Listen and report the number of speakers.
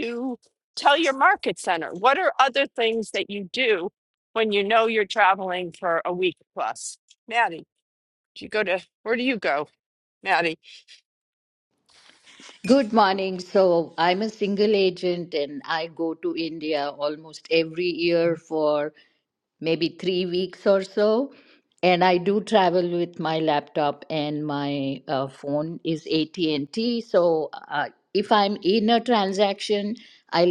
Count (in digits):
2